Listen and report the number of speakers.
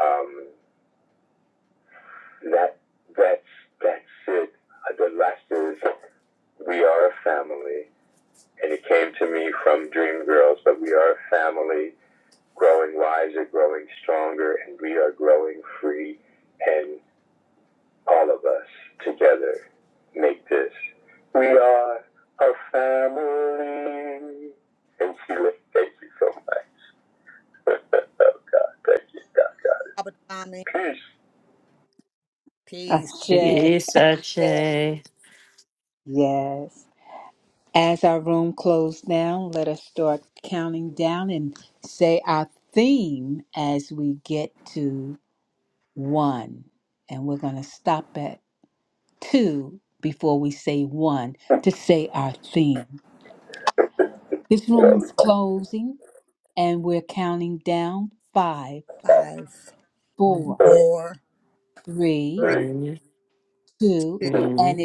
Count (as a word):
four